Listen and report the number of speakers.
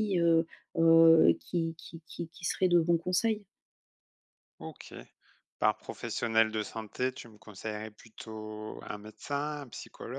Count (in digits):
2